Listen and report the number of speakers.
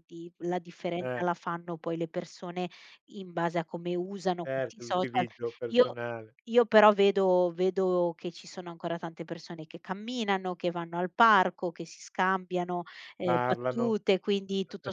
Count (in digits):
2